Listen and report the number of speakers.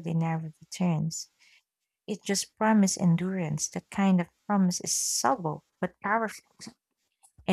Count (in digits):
1